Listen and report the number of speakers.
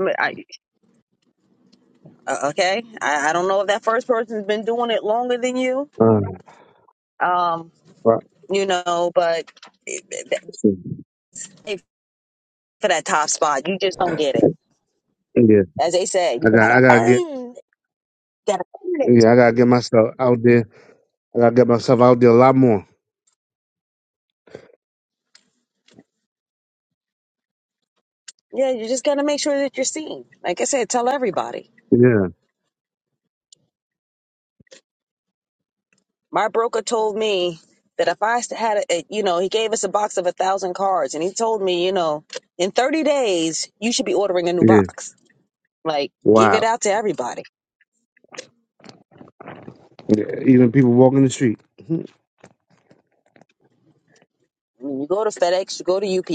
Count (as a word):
two